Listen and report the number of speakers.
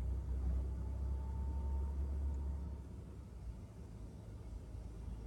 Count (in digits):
0